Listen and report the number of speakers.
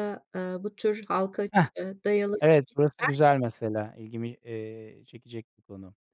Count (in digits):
2